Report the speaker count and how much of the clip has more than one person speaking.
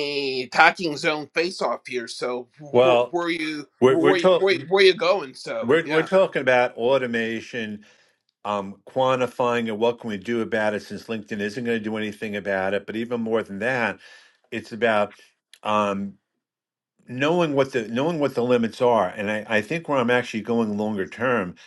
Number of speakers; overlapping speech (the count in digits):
2, about 8%